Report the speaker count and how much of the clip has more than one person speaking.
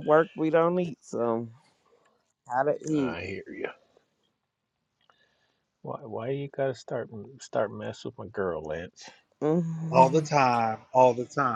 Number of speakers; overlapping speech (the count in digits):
3, about 5%